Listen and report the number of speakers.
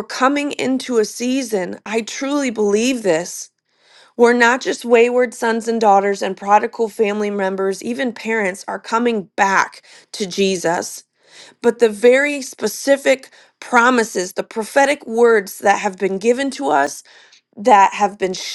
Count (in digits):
1